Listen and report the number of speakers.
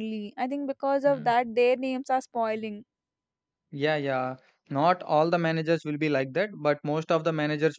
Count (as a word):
two